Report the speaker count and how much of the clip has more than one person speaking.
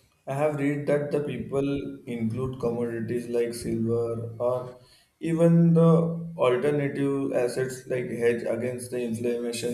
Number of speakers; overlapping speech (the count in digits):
1, no overlap